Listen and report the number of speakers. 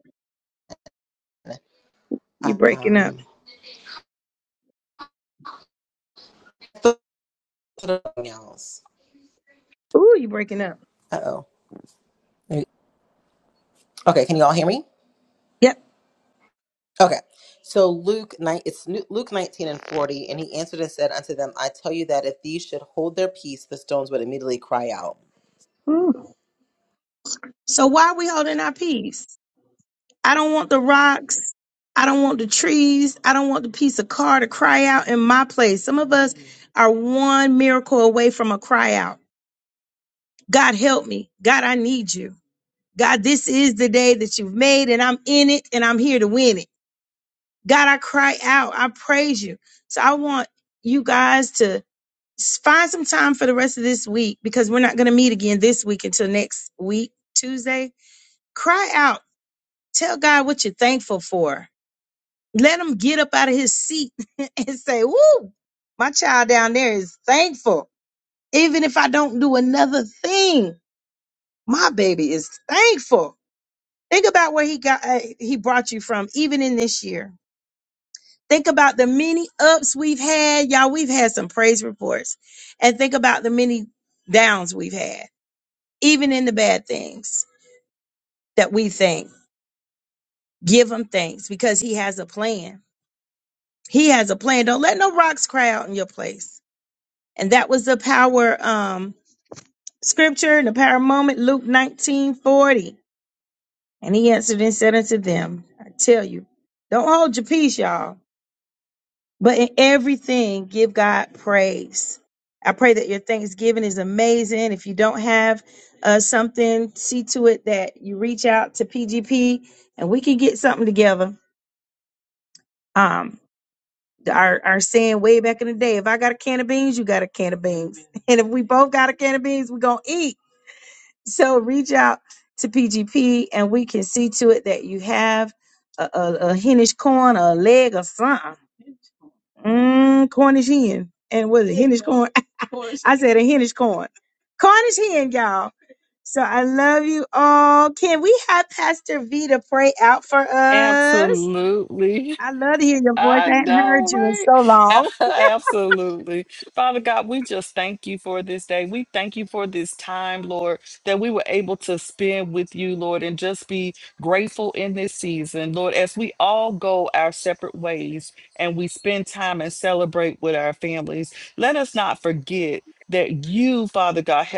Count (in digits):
3